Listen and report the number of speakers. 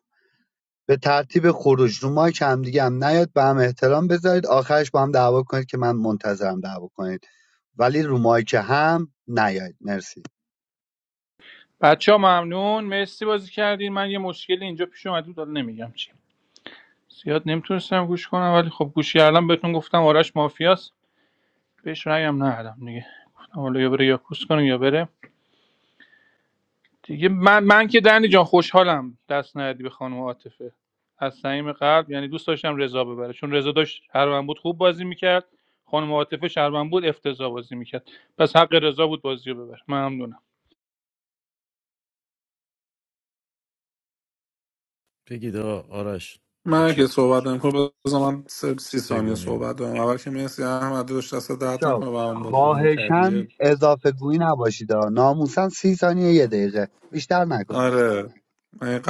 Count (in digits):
4